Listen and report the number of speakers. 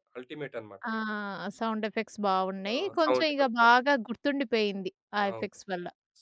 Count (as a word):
two